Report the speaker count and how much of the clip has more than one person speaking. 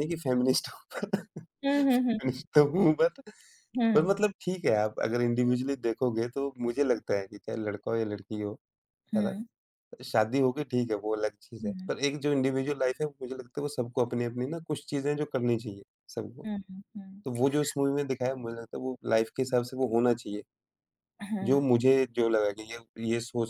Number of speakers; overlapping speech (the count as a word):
two, about 6%